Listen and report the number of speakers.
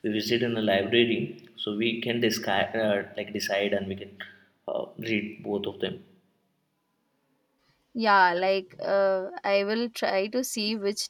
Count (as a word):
two